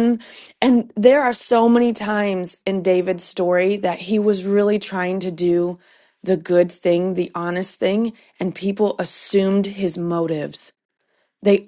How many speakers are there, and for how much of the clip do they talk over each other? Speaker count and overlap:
1, no overlap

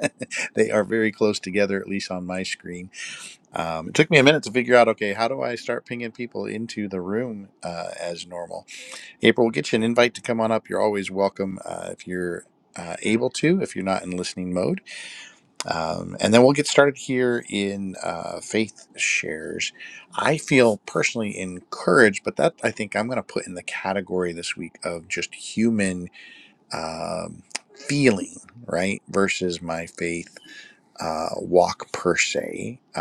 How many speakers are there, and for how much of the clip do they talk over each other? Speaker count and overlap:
1, no overlap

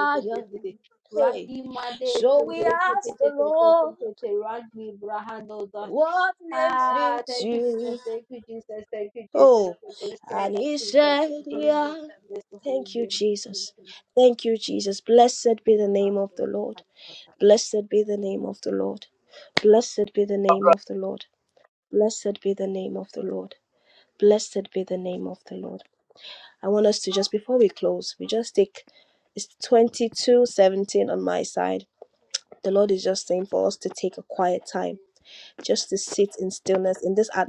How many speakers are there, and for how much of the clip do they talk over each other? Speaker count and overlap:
2, about 20%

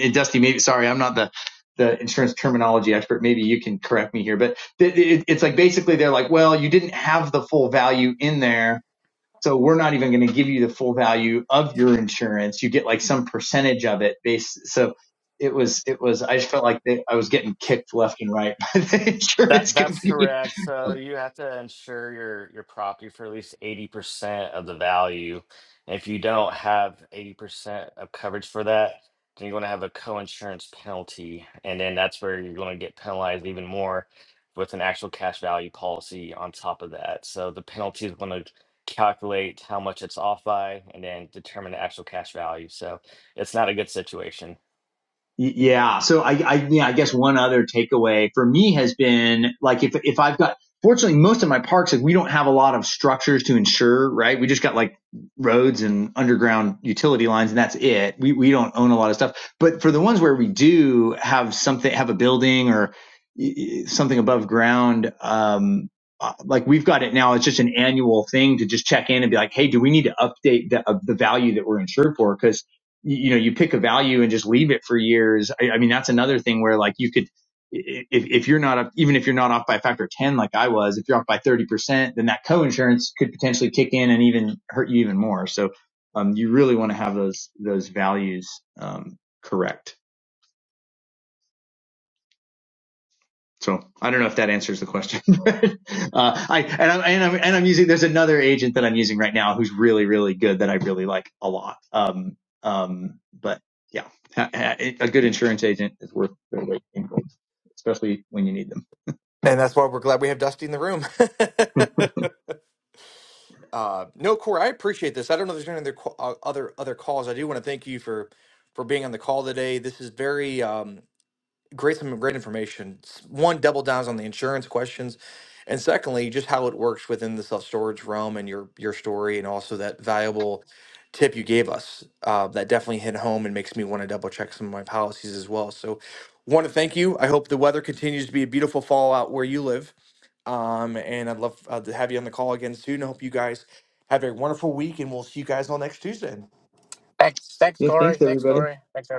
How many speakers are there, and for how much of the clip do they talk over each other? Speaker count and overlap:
4, about 1%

